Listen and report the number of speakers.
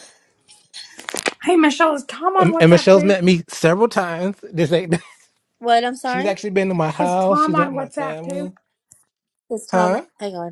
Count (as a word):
three